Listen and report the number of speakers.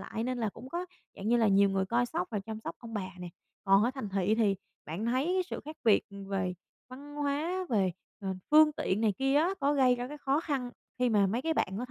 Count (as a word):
one